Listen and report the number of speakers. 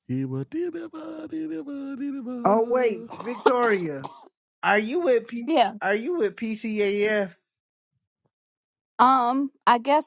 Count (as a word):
three